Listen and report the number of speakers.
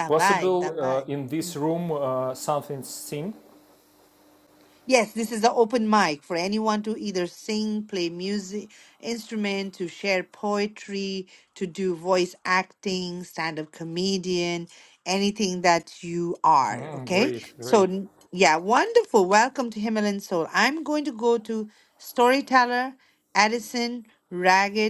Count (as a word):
two